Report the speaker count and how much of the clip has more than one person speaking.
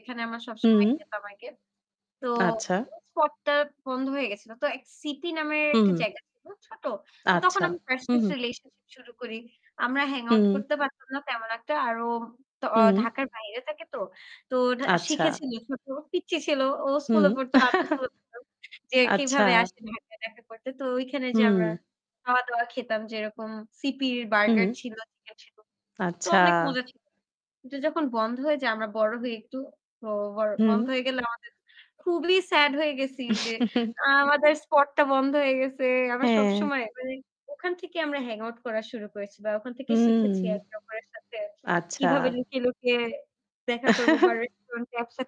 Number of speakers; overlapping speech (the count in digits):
2, about 11%